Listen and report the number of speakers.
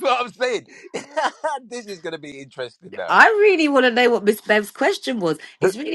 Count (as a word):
two